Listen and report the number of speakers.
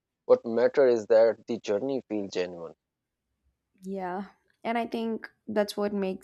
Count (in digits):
2